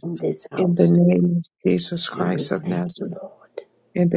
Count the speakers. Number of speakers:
two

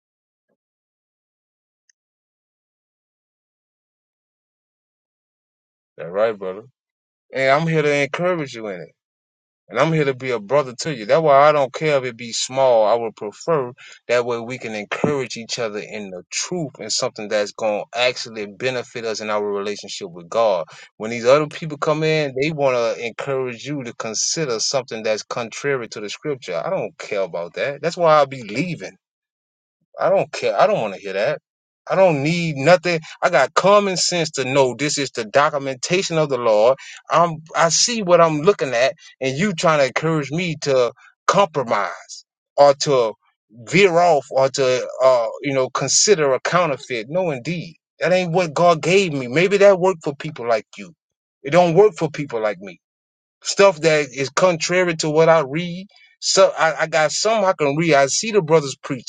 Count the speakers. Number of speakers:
one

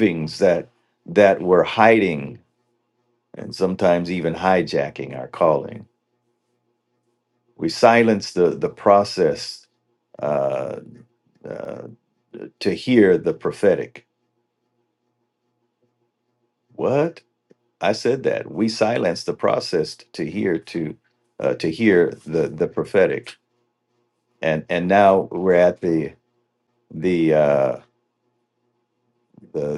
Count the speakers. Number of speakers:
one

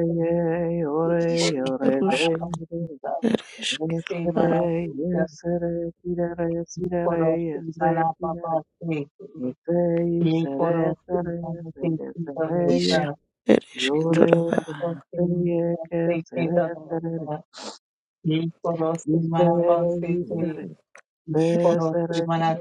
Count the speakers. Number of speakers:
three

